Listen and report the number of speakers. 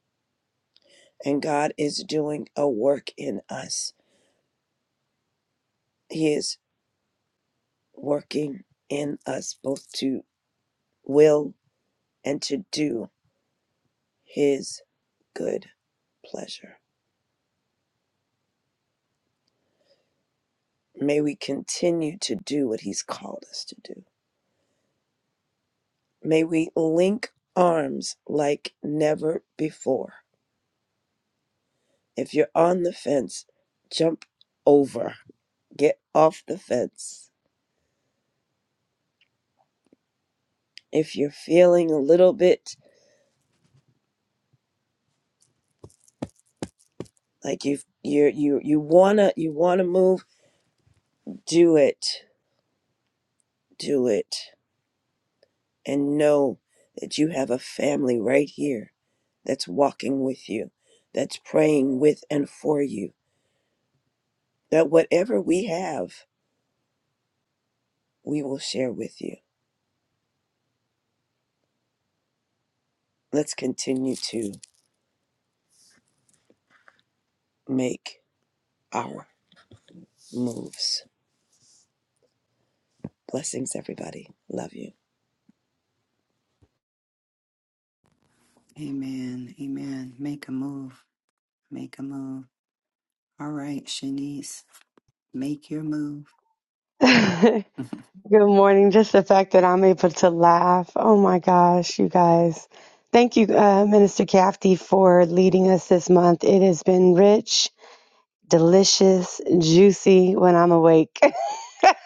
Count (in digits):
3